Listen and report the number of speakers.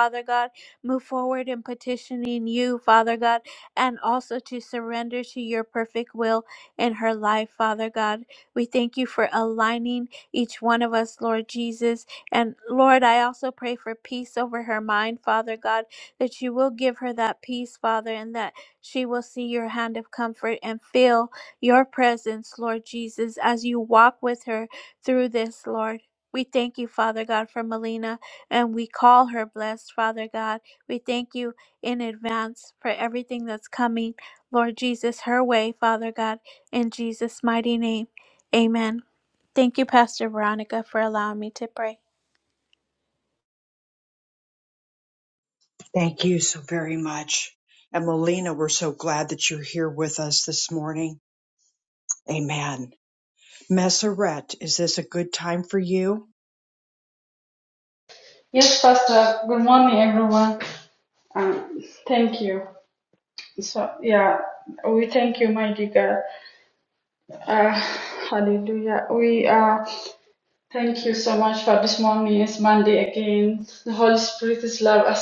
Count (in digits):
3